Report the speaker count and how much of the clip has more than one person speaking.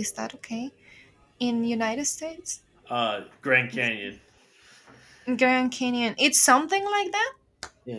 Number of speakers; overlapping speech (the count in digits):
2, about 1%